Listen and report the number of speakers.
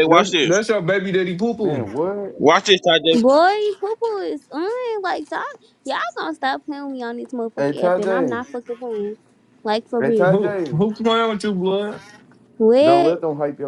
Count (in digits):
4